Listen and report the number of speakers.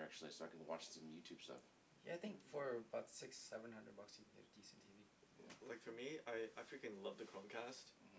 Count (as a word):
three